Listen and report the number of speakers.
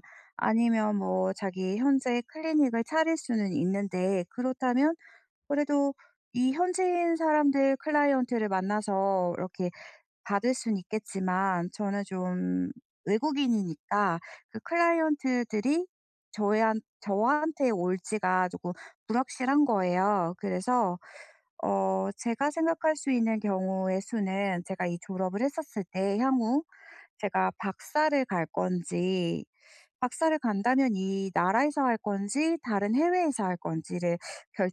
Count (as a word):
one